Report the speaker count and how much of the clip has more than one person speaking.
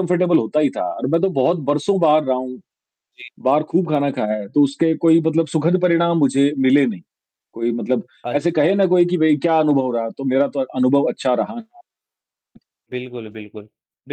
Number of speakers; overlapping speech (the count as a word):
two, about 4%